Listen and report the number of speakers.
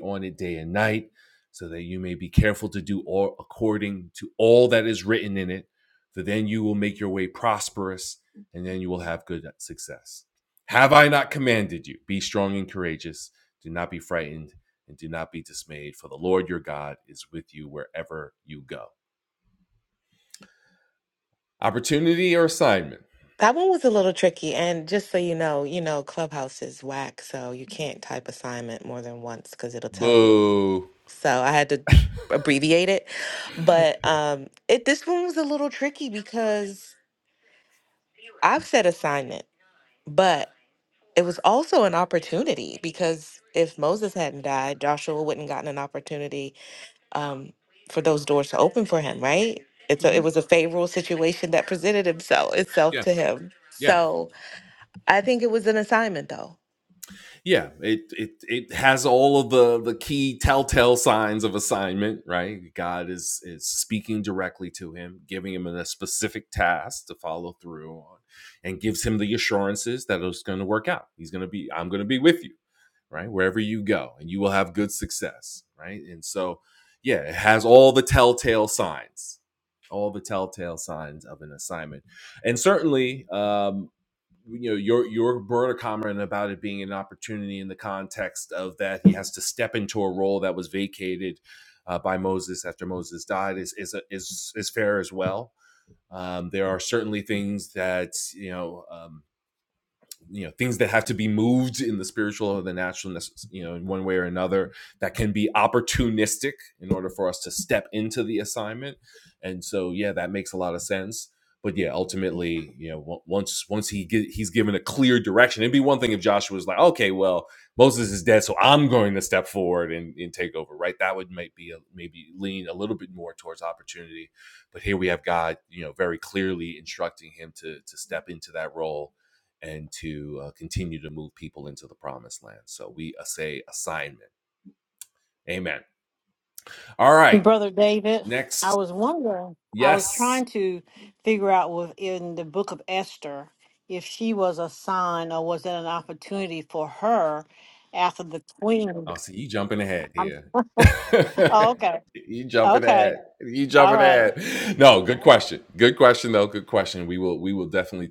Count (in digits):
3